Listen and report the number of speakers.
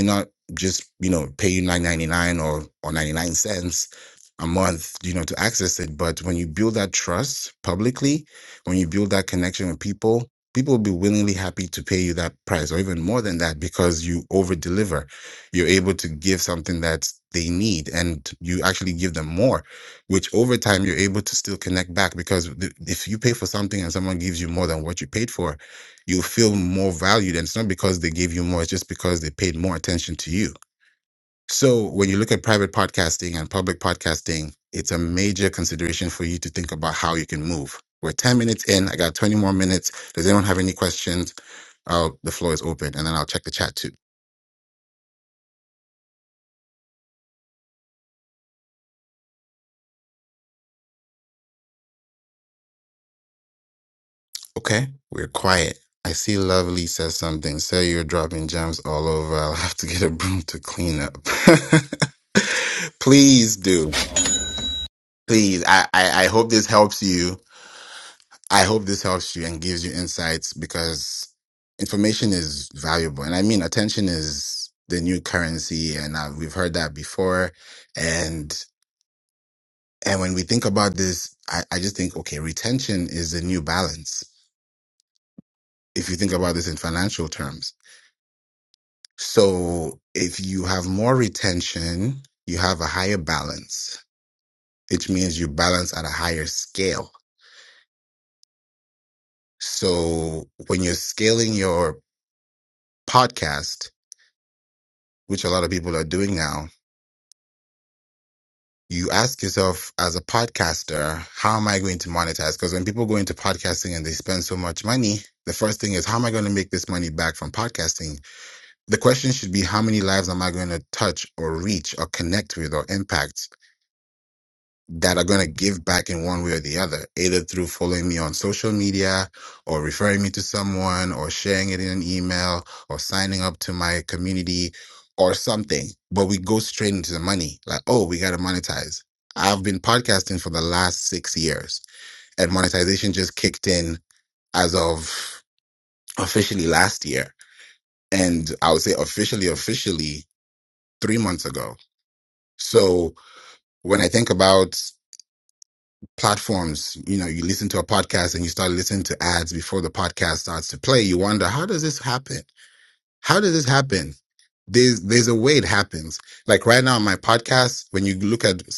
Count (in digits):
1